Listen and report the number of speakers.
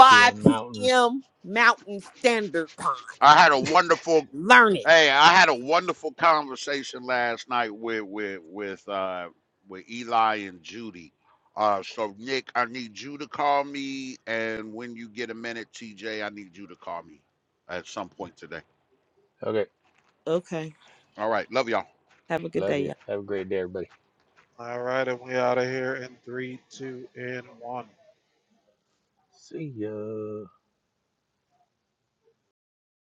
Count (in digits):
4